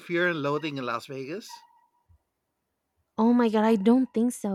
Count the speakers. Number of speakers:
two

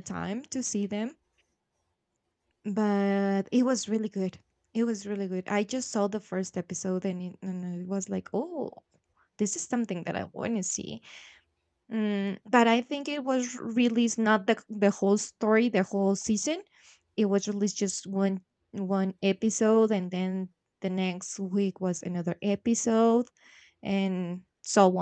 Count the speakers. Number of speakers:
one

